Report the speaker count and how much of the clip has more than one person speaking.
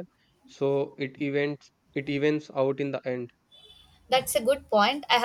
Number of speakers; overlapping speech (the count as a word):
two, no overlap